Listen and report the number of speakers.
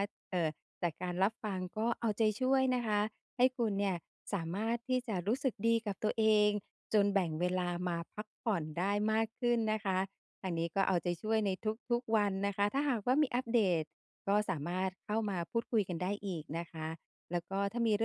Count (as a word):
one